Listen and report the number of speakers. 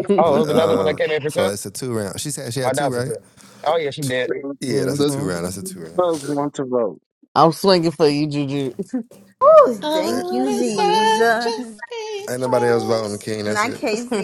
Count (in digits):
5